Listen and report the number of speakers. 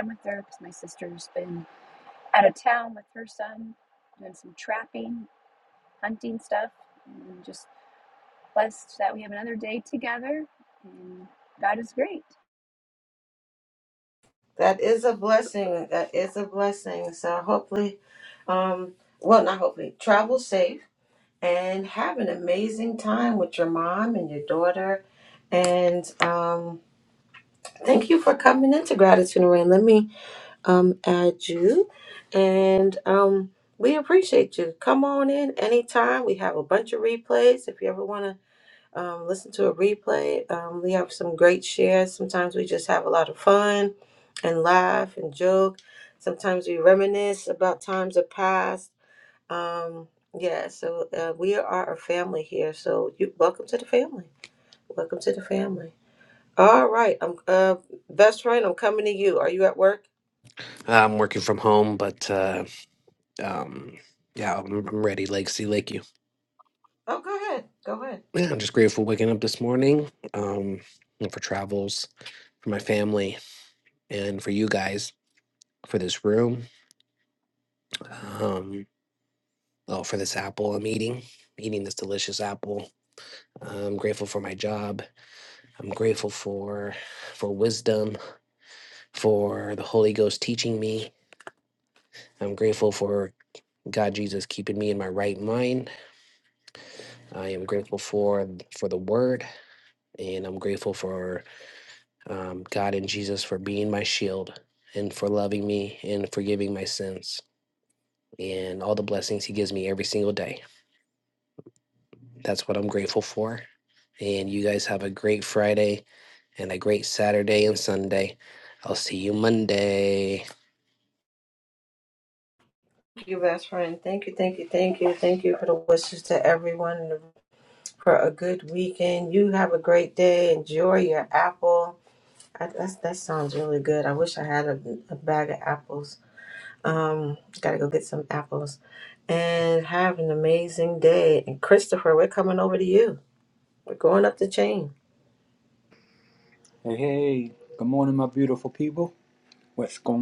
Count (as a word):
four